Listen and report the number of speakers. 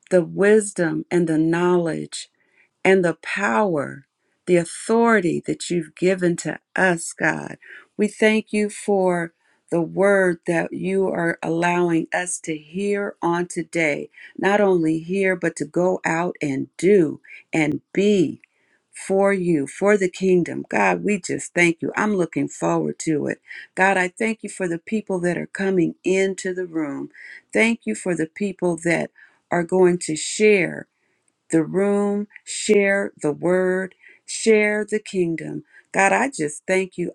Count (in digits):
1